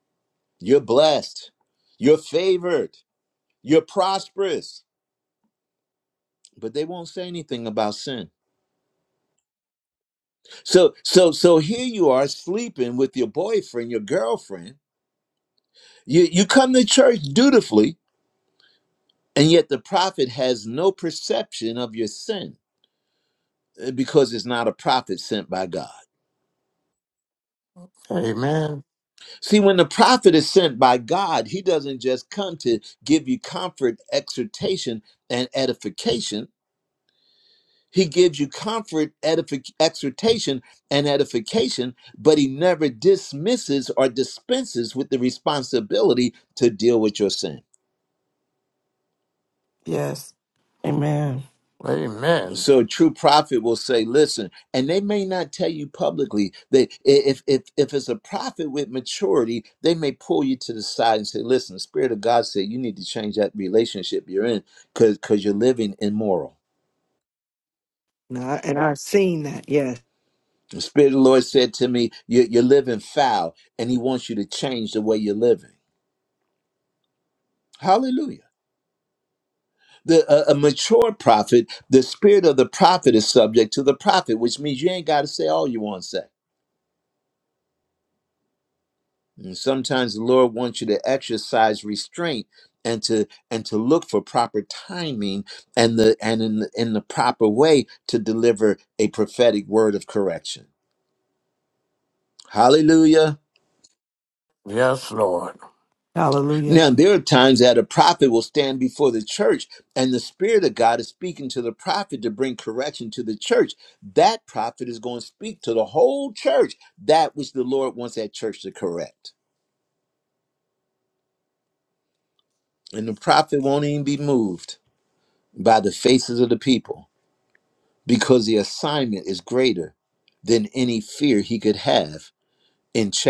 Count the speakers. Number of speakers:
4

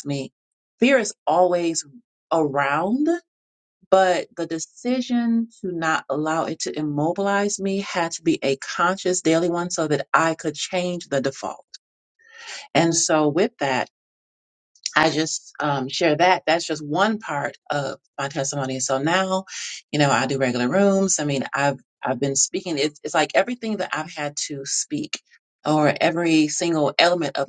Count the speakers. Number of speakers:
1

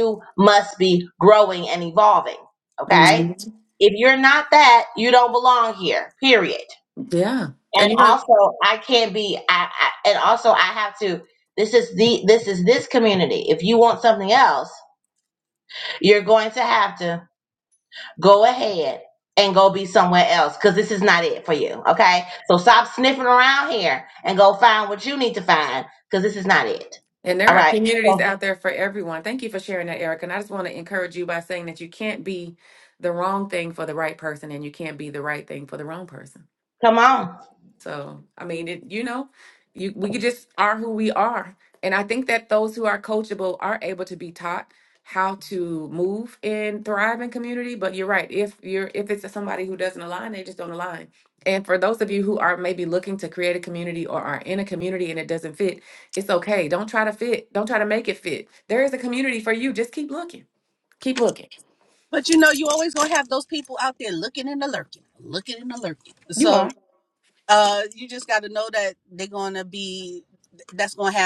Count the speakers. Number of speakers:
3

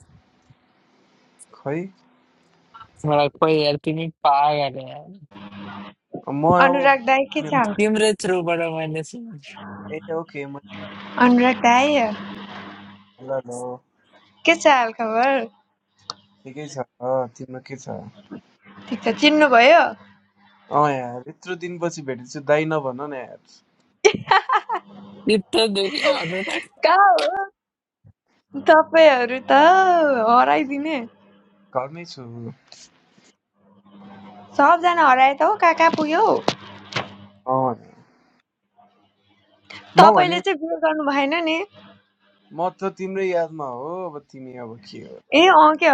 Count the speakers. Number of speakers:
3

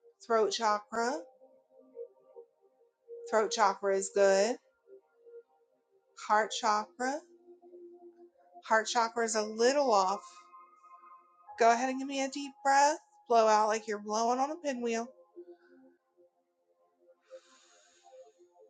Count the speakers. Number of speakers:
1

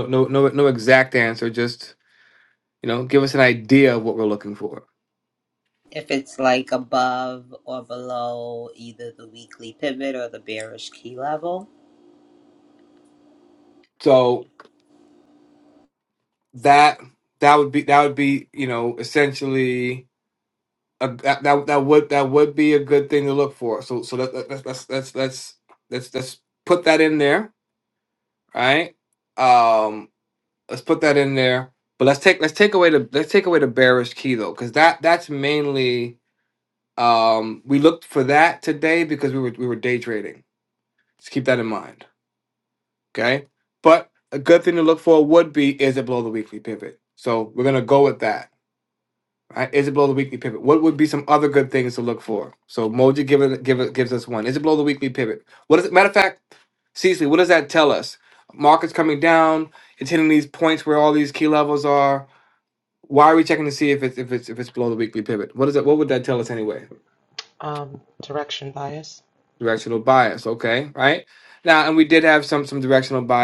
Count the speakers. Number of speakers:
3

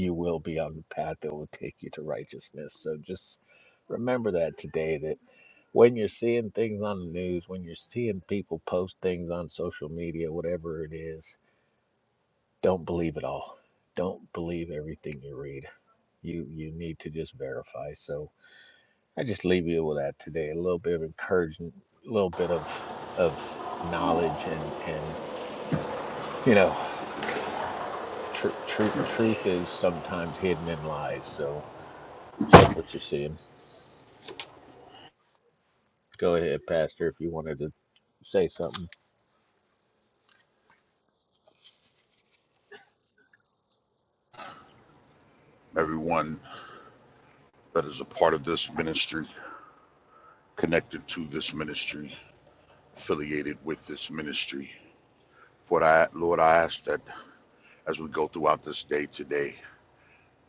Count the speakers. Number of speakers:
2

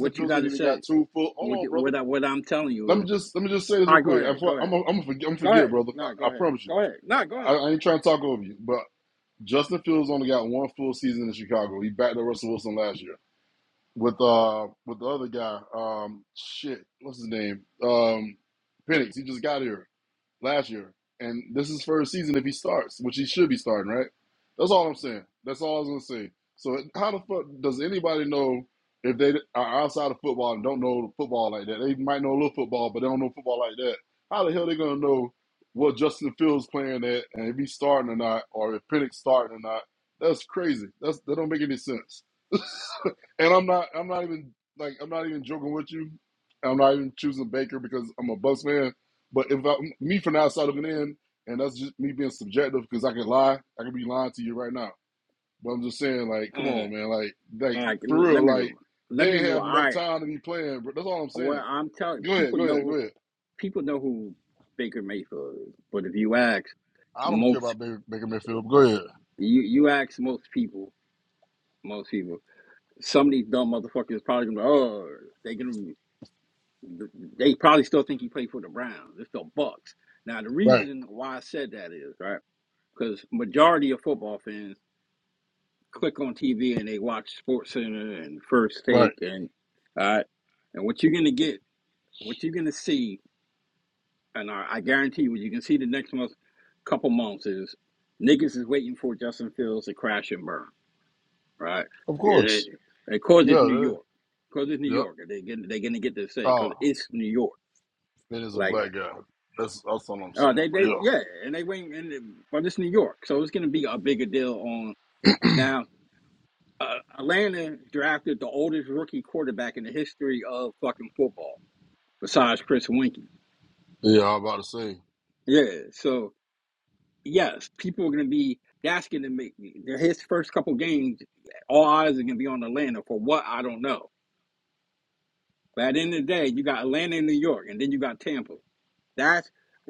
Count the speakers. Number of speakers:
2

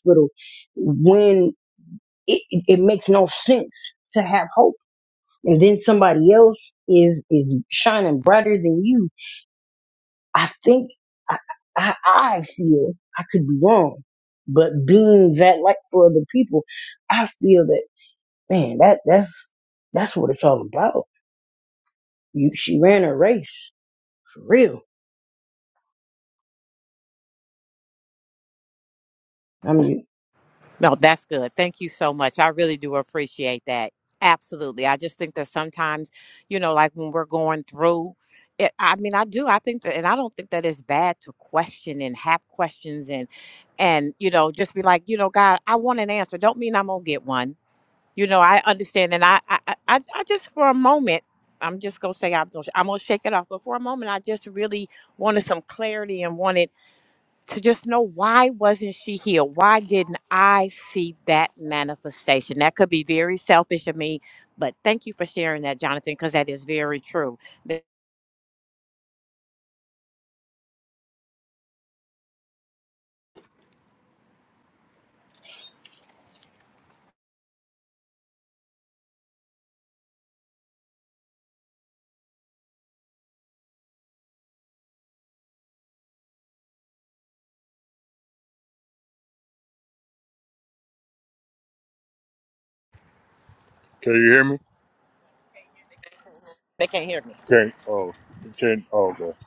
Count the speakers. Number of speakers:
3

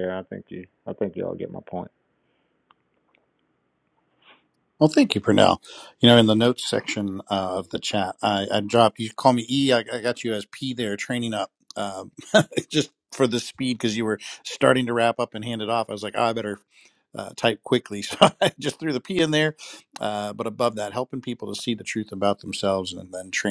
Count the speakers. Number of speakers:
2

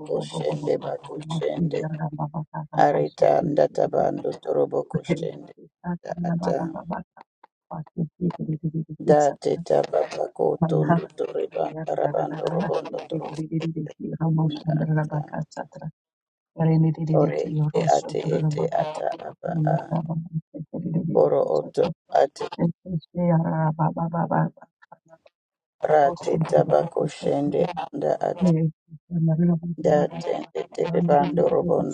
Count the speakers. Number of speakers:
2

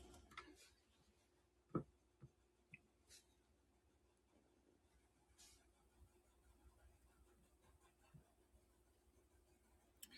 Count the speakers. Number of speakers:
0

